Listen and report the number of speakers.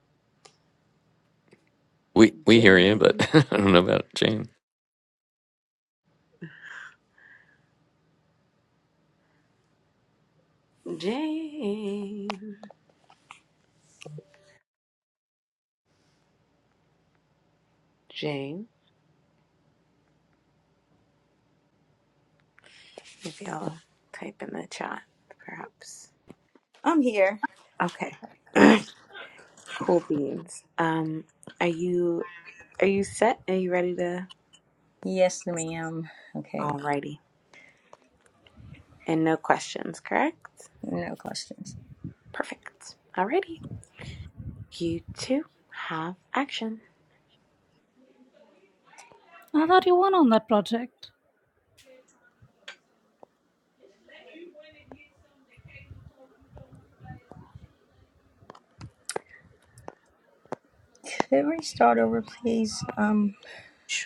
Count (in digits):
4